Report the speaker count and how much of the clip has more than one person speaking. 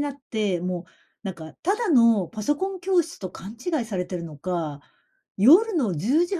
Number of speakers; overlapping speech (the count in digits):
1, no overlap